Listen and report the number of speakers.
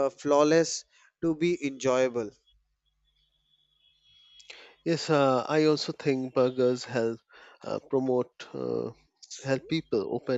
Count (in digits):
2